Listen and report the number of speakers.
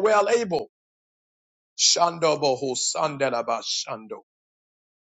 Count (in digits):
1